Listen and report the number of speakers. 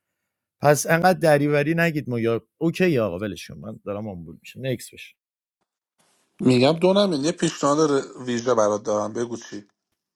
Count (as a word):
two